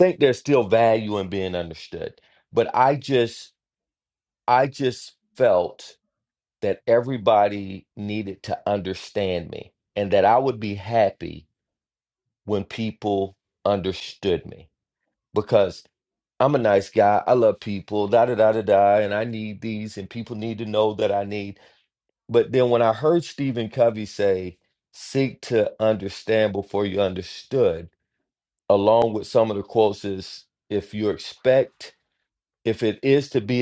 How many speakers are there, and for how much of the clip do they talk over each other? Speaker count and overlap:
1, no overlap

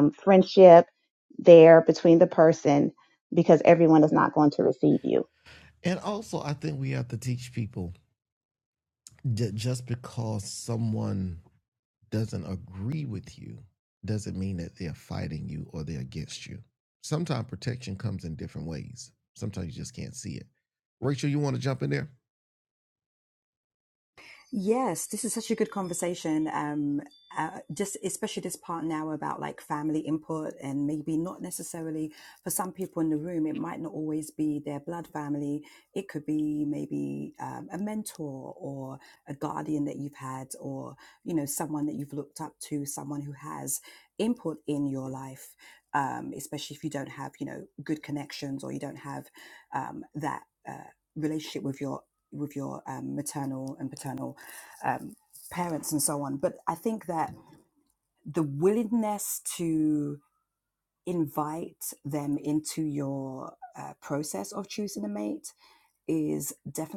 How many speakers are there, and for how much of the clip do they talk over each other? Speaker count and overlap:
3, no overlap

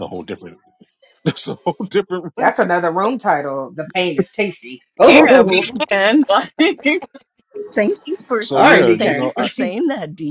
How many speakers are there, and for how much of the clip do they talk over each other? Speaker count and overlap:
4, about 10%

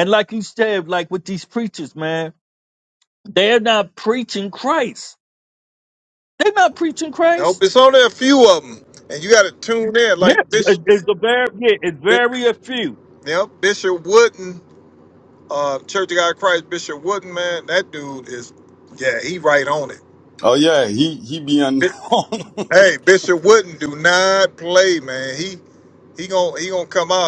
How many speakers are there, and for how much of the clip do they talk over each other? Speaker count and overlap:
3, about 3%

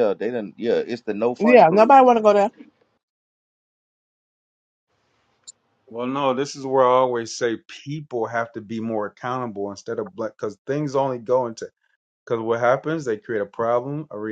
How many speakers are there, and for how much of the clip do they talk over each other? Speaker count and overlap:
3, about 4%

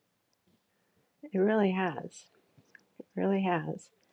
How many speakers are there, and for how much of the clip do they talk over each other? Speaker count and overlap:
1, no overlap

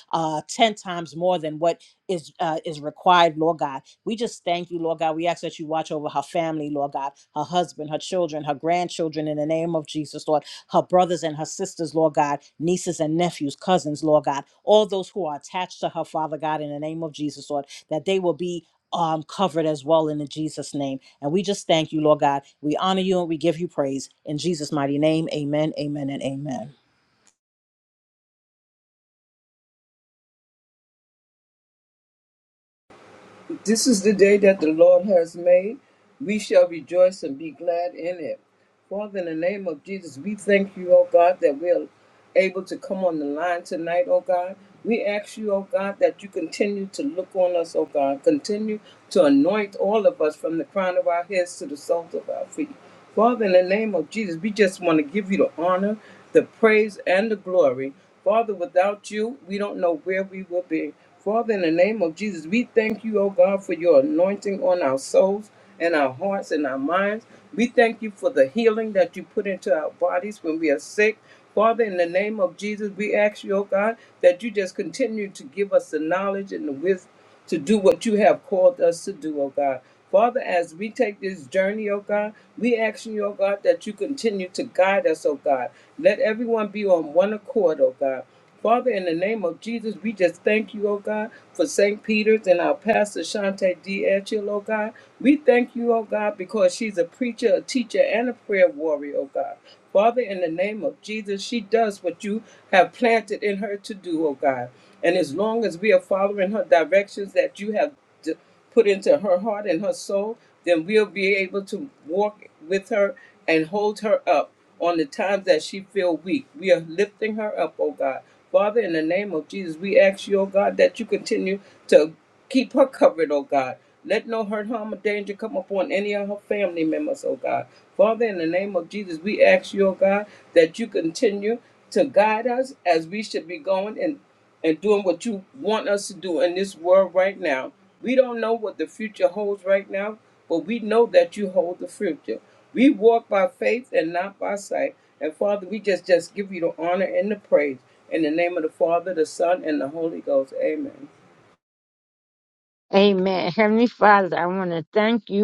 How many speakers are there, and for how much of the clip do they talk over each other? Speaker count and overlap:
3, no overlap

